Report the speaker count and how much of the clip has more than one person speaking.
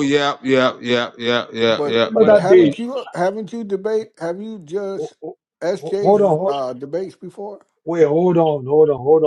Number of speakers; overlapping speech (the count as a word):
three, about 20%